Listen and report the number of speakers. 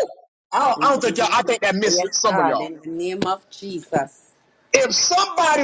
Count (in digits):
2